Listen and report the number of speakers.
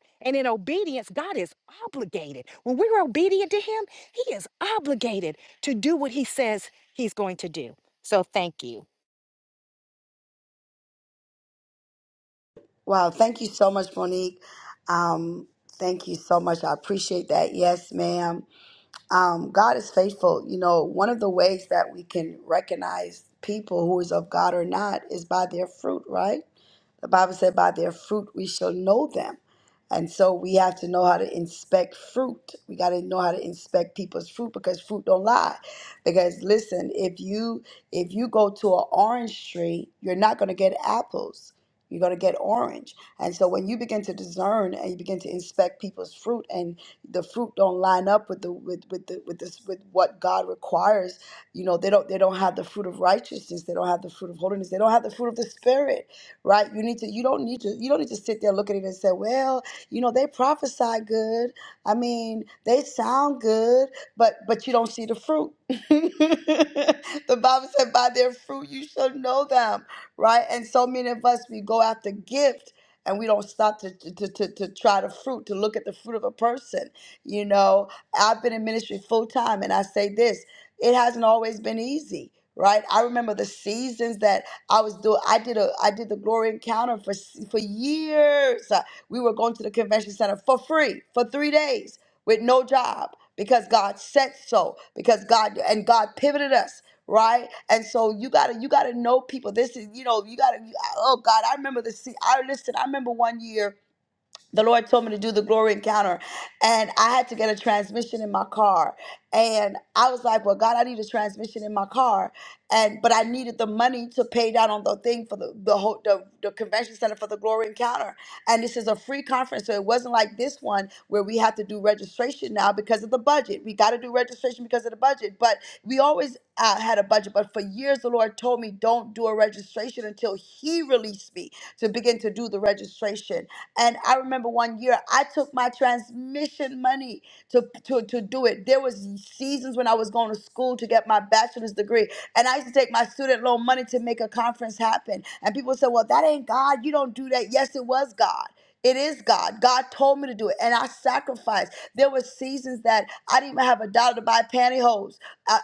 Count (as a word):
two